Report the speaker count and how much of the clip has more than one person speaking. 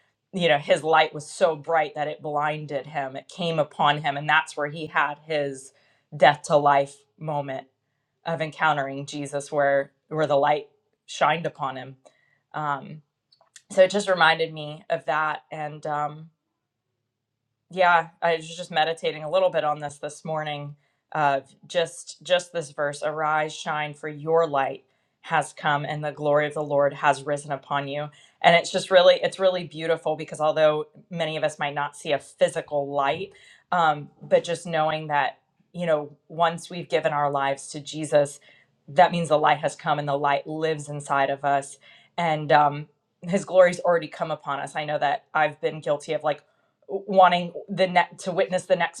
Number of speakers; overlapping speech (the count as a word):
one, no overlap